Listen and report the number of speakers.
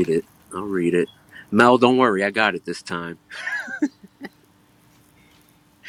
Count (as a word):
one